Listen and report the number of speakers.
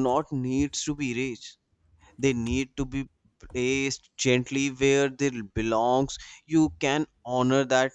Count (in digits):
1